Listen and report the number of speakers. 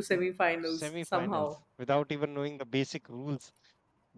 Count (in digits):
2